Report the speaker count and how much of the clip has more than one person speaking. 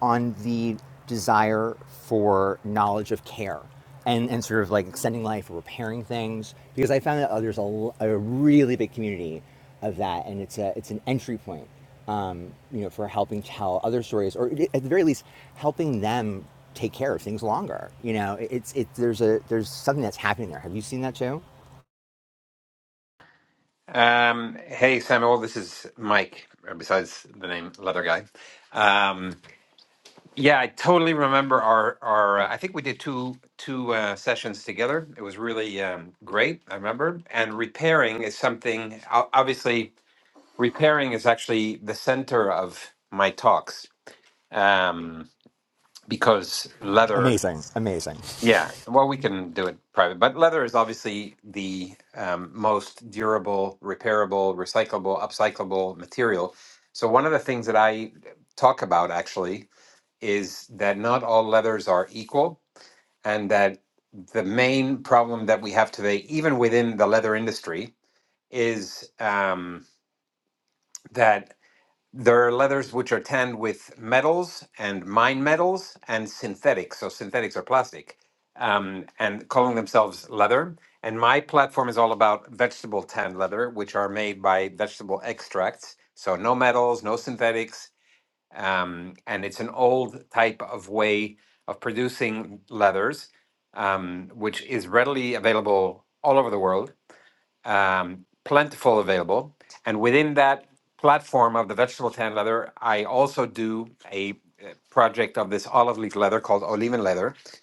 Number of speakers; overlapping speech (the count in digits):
2, under 1%